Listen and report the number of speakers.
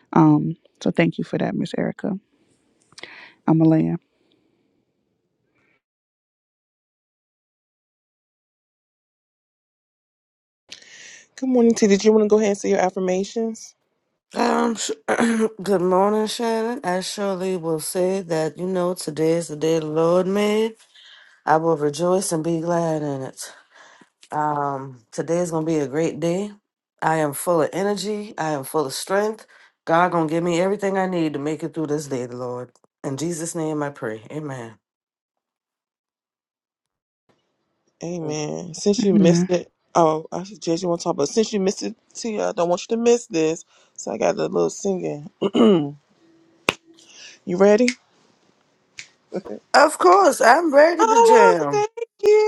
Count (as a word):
three